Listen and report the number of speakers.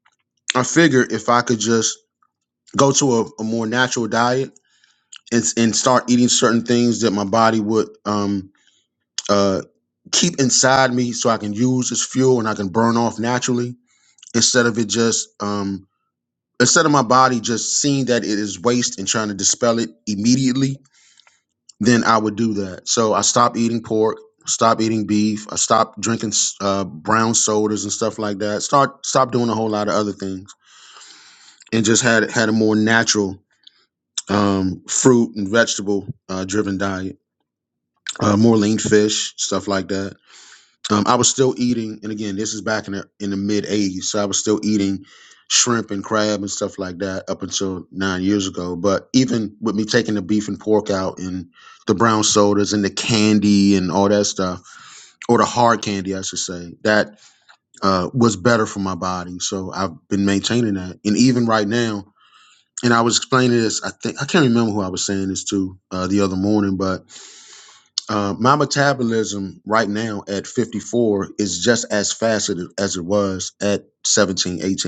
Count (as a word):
one